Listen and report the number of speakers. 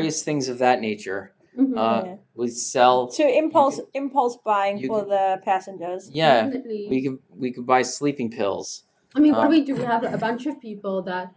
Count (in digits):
3